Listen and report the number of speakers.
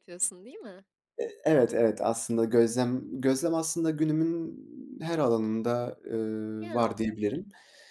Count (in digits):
2